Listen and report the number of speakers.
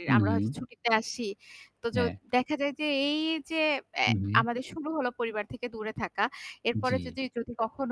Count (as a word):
two